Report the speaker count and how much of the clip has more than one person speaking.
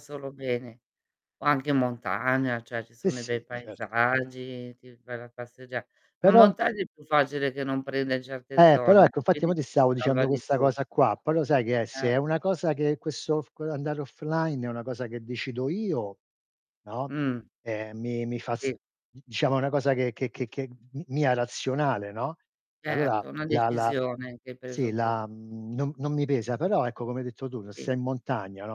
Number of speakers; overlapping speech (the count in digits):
2, about 16%